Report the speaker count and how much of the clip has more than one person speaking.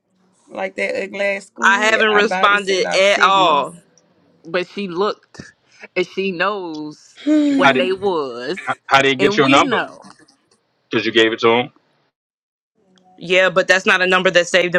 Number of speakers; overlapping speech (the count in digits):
4, about 21%